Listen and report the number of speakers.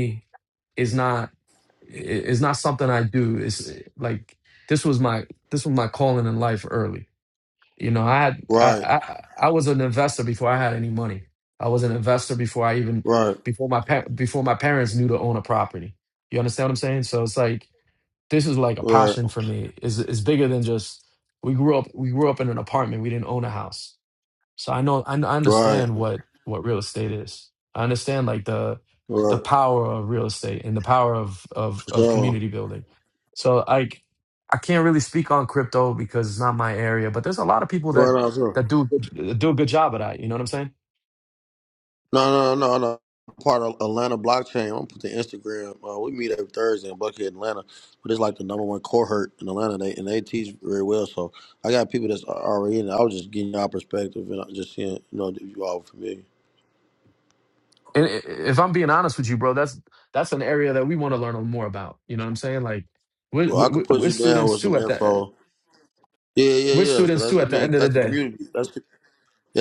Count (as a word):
two